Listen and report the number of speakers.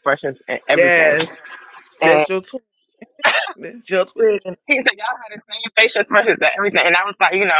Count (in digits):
2